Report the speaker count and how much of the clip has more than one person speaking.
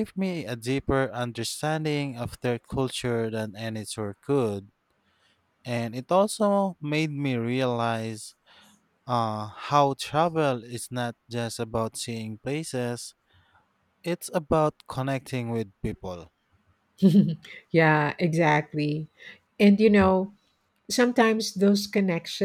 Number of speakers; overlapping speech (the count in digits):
2, no overlap